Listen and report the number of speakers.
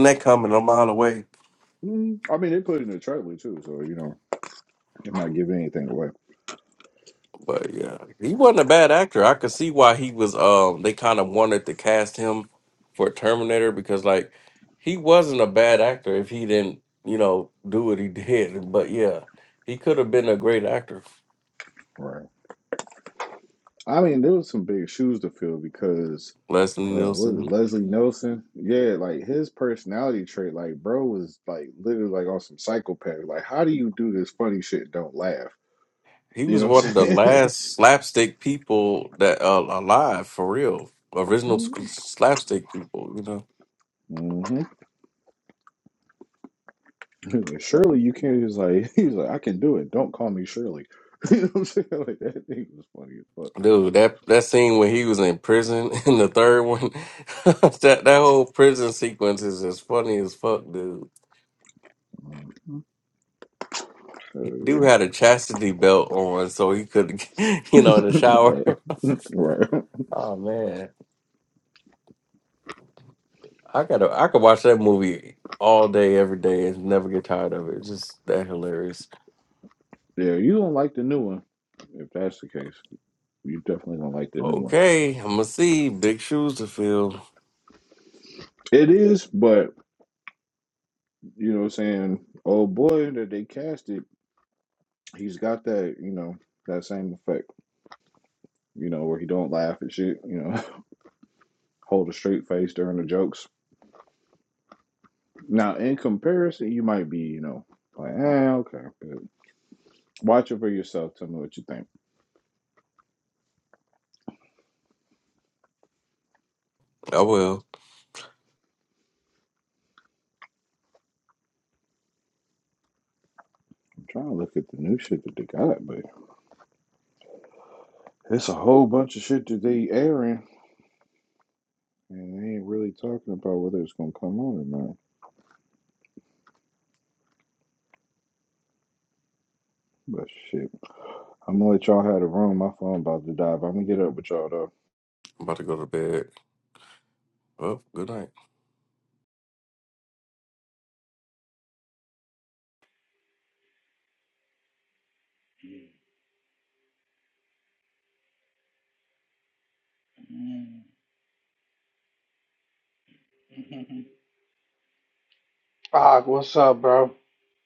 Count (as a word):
three